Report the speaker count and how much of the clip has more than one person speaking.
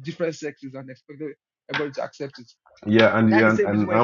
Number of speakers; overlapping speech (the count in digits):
2, about 18%